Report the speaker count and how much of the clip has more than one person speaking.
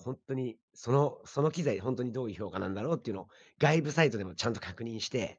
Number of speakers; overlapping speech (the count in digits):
1, no overlap